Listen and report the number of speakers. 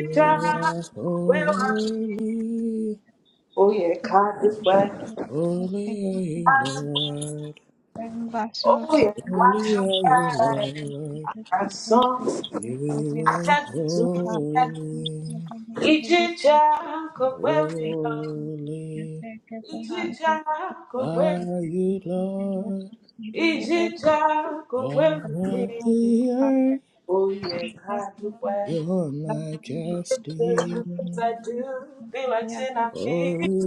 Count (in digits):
3